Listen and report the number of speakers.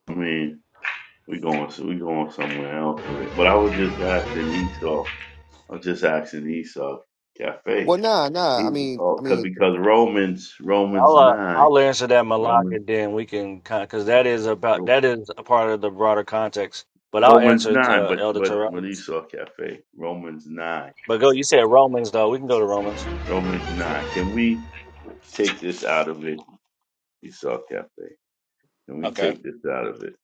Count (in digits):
3